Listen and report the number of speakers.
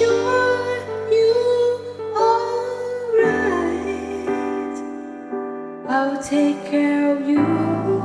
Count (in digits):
1